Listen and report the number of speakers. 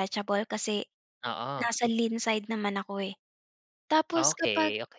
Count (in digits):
2